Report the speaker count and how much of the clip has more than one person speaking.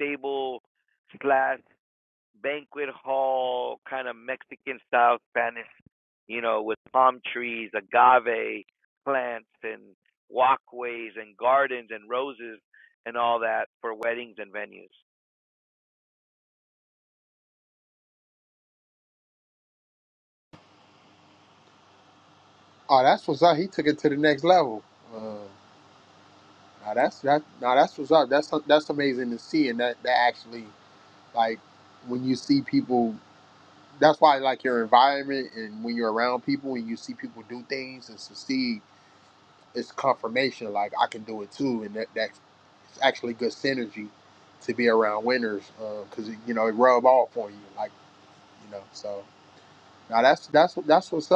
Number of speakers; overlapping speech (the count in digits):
2, no overlap